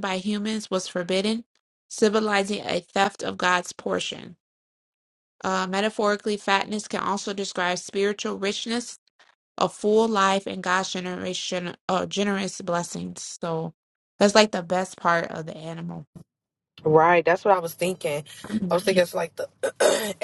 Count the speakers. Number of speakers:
2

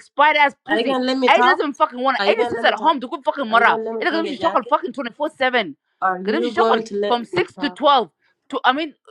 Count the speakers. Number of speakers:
2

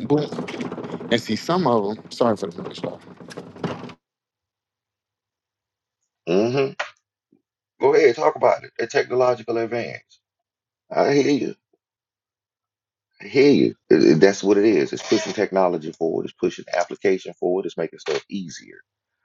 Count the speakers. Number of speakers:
2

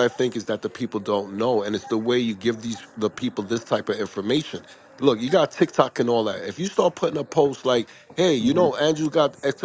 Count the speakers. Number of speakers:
1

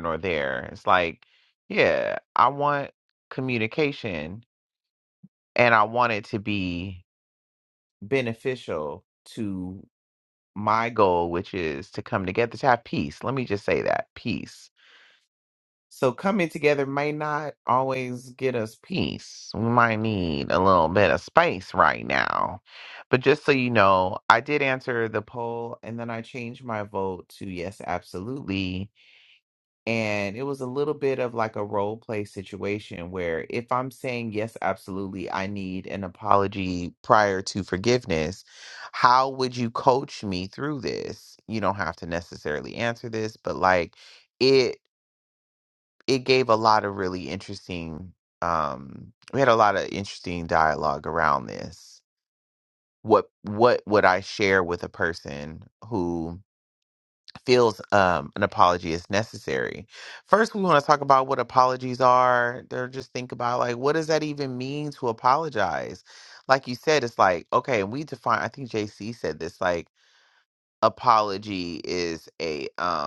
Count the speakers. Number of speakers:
1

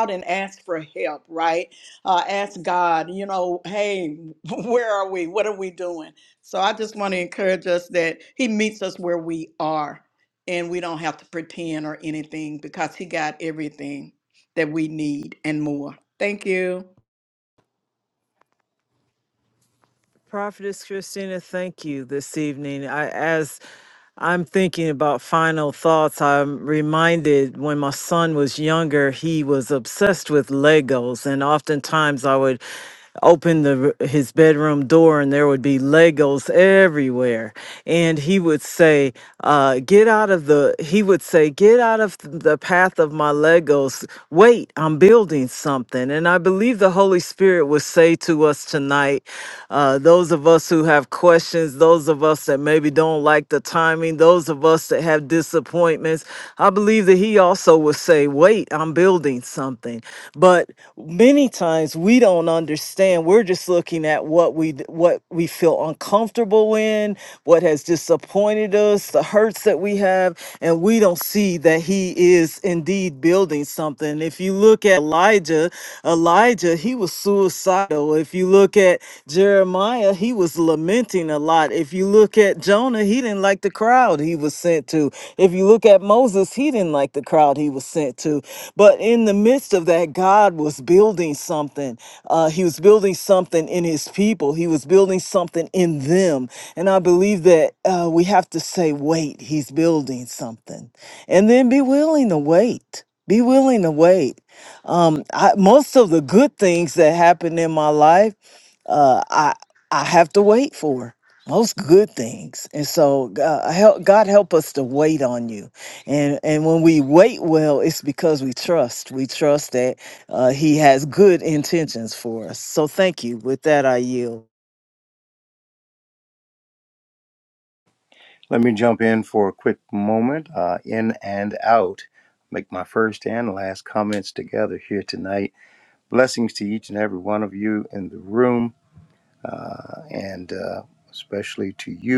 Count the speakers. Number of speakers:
3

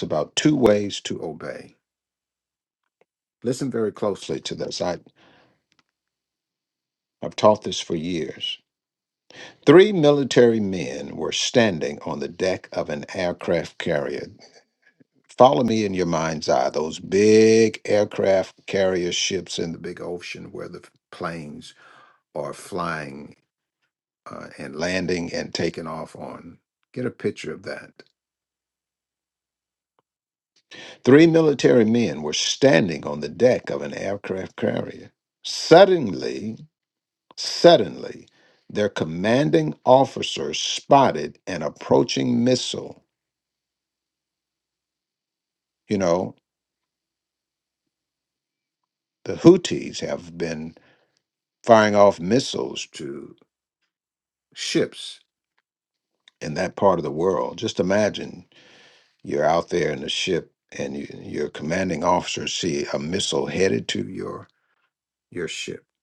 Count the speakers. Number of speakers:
1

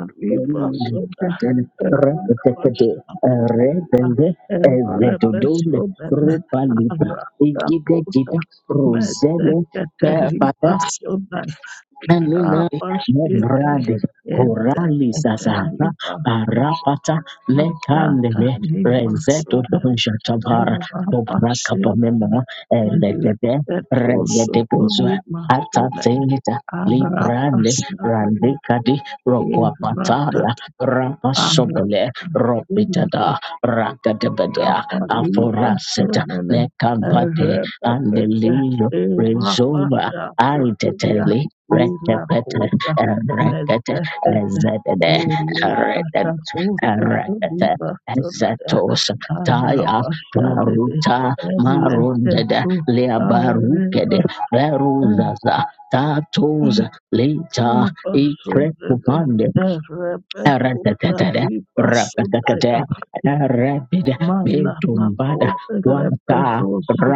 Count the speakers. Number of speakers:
2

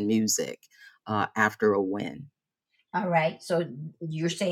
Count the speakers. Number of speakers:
2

